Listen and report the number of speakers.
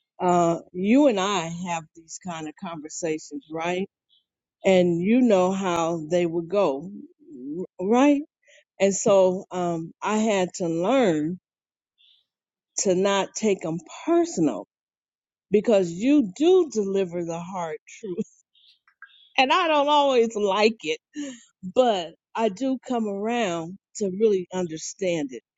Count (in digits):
1